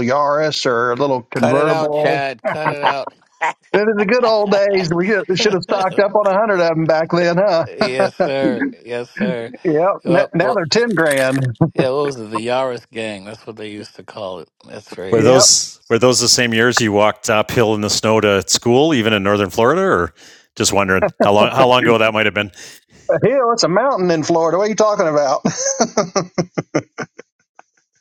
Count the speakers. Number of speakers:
three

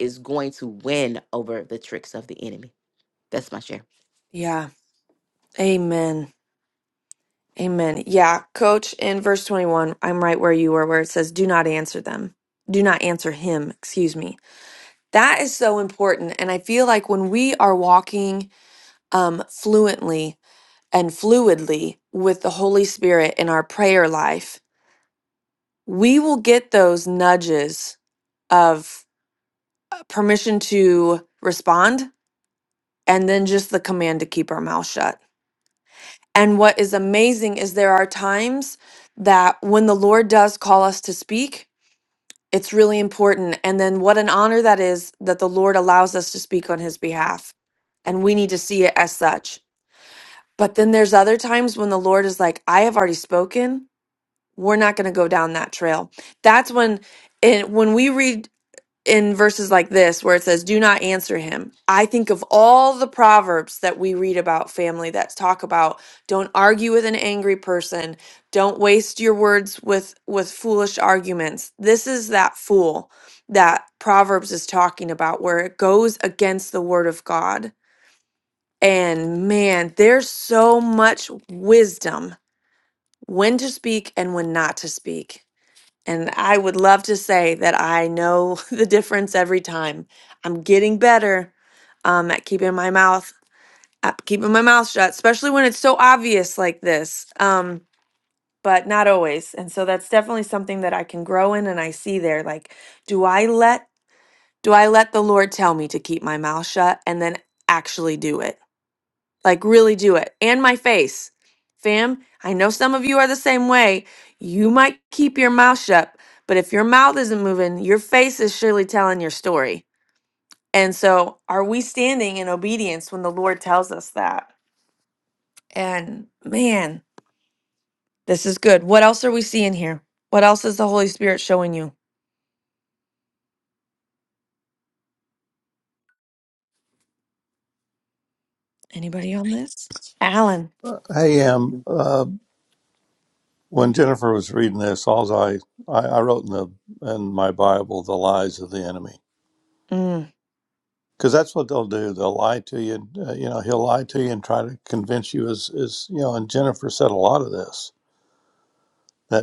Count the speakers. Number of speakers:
three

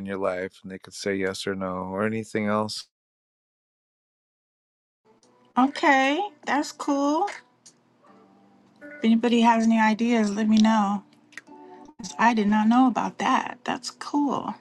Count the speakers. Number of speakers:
two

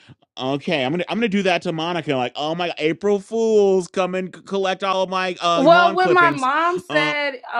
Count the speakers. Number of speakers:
two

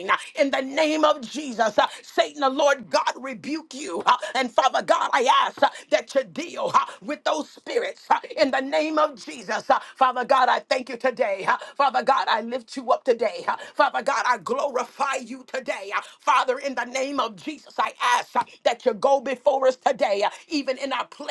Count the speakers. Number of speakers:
one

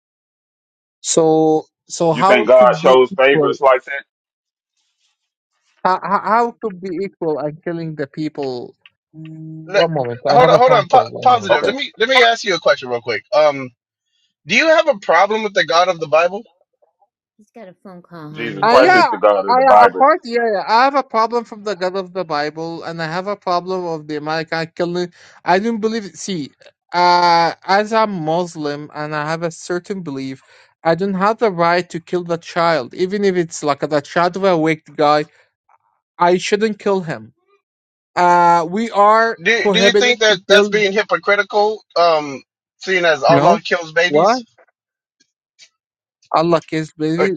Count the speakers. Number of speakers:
four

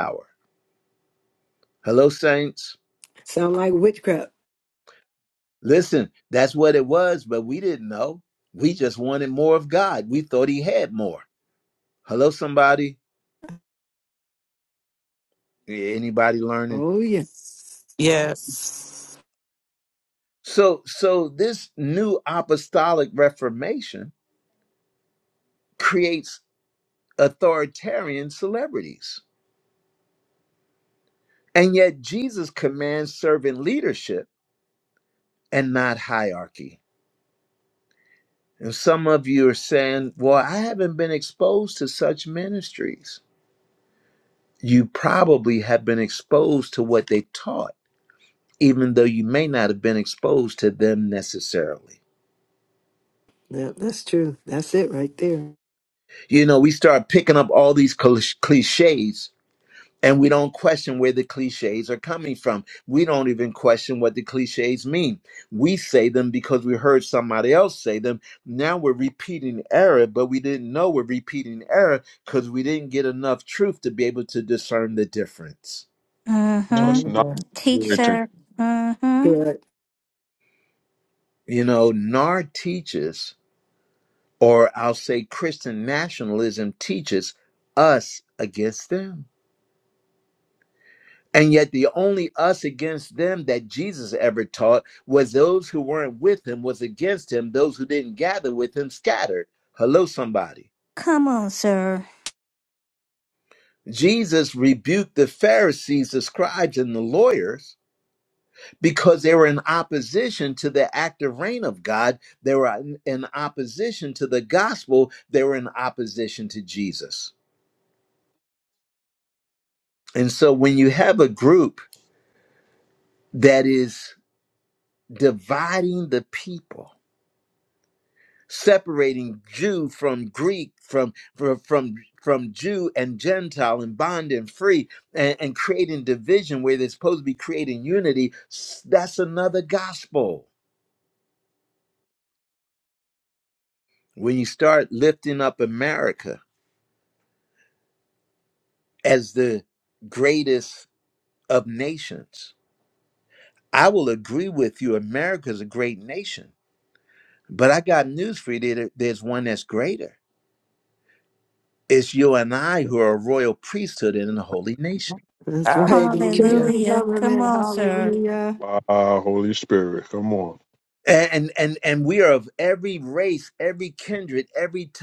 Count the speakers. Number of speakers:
five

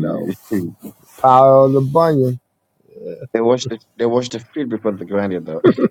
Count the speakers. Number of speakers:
two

